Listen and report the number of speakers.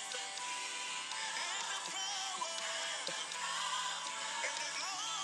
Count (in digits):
0